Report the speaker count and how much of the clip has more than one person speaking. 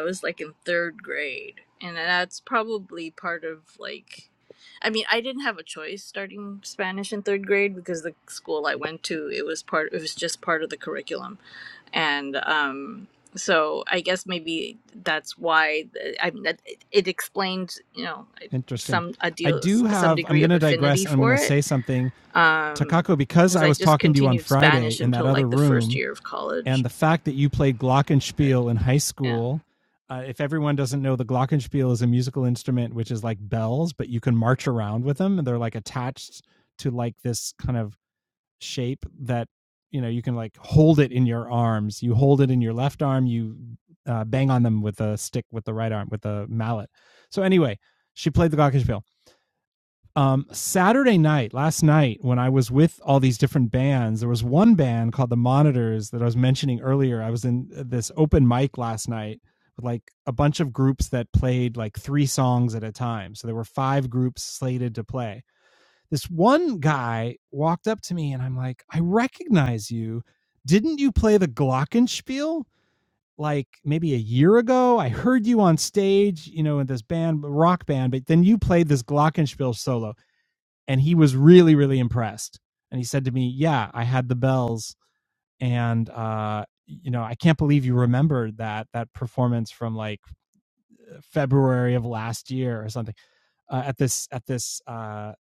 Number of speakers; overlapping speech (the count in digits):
2, about 6%